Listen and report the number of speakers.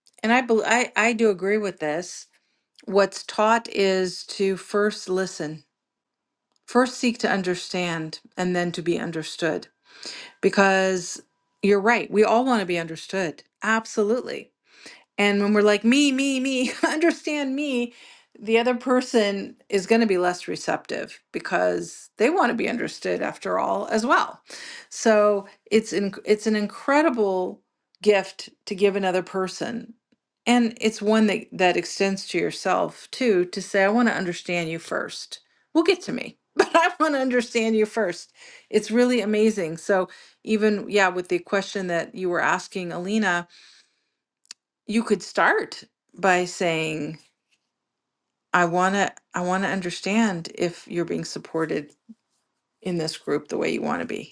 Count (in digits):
1